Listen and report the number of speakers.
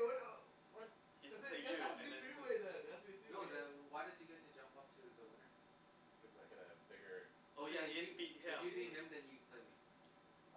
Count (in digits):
4